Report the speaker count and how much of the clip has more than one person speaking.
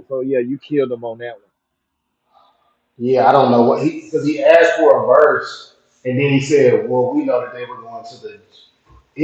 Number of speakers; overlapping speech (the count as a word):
two, no overlap